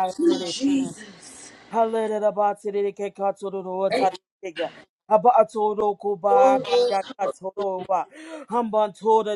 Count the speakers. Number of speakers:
2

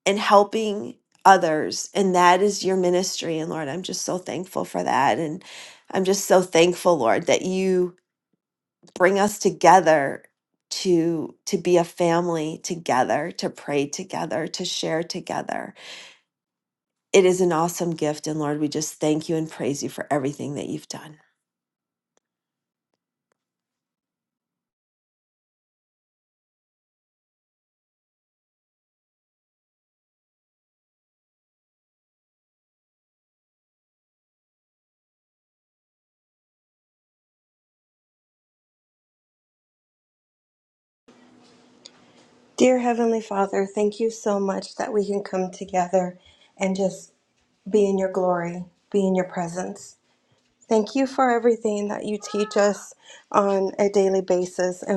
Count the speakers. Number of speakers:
2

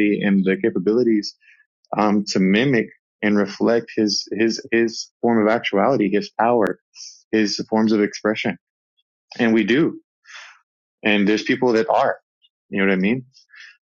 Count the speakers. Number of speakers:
1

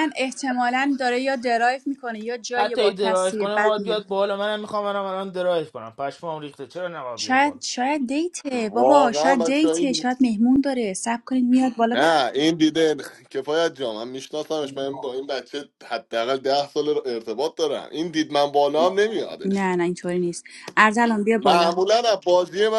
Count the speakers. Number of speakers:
3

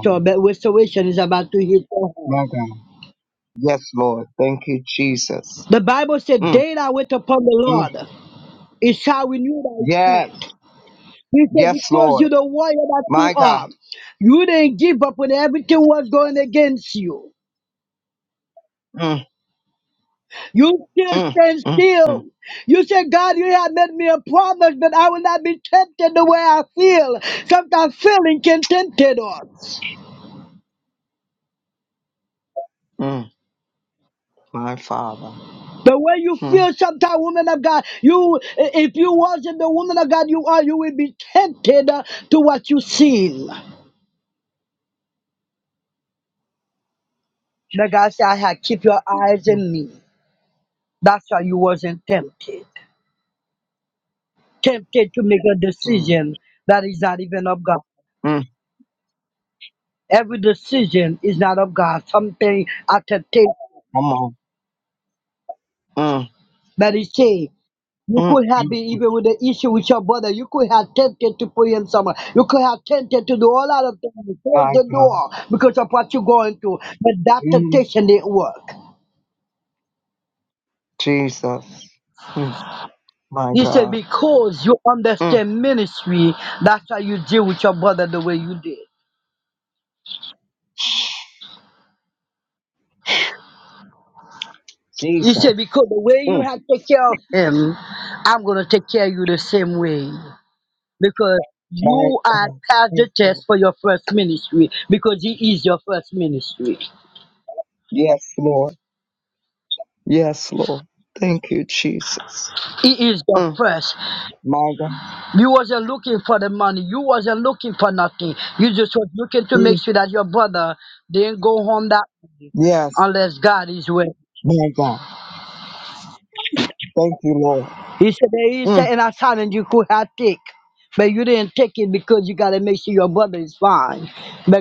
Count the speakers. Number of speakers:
2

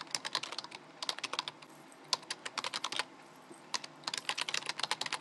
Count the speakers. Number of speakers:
0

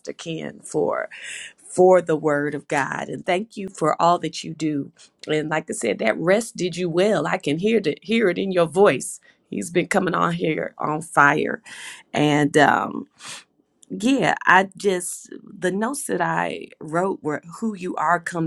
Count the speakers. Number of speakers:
1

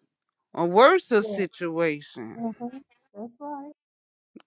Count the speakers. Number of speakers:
2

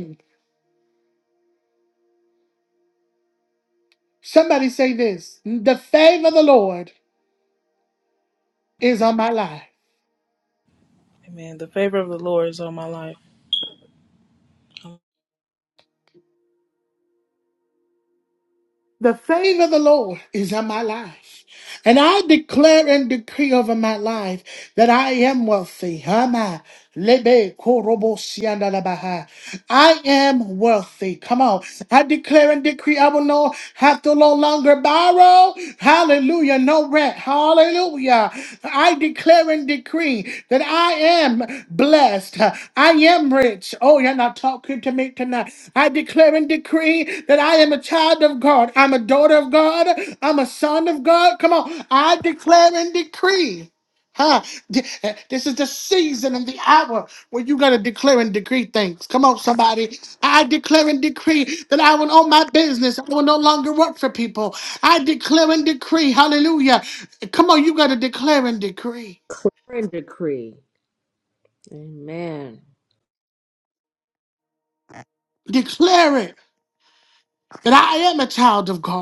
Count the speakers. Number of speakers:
3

